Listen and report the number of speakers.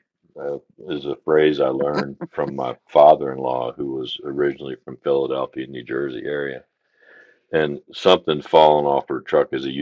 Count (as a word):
one